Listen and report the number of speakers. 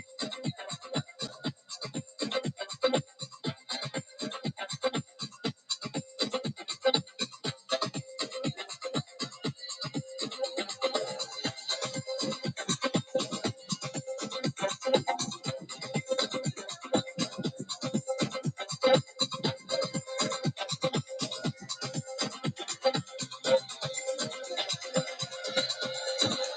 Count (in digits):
0